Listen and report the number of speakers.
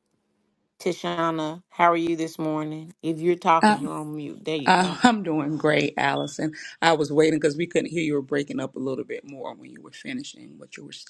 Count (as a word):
two